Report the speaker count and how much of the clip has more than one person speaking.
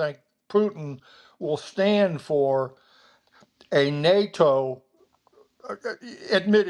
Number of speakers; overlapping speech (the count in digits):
1, no overlap